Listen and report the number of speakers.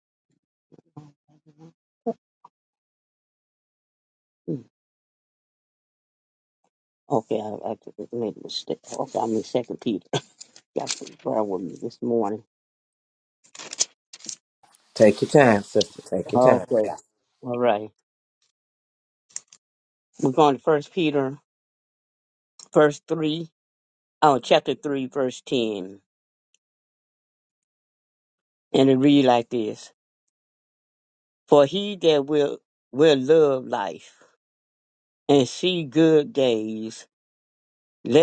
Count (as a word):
two